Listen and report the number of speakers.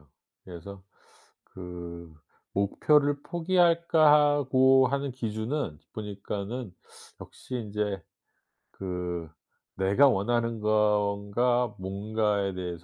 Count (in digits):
1